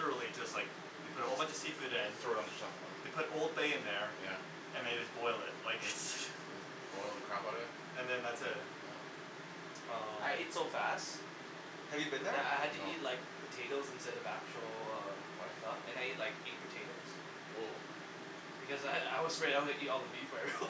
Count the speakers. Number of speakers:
3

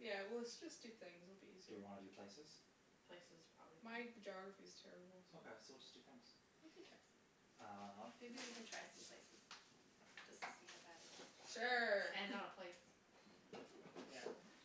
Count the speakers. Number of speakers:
4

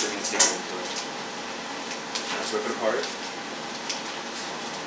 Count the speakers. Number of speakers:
1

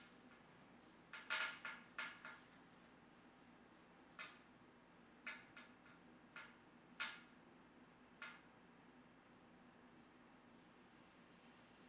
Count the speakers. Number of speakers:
0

